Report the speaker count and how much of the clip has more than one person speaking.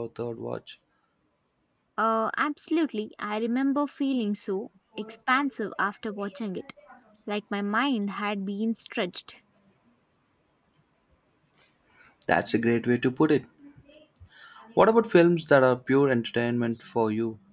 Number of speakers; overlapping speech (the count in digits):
2, no overlap